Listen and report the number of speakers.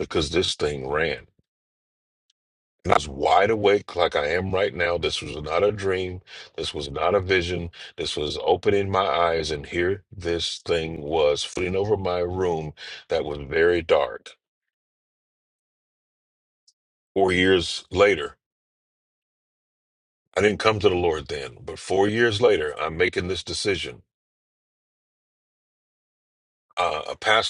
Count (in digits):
1